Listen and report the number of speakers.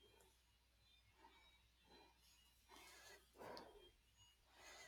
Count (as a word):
zero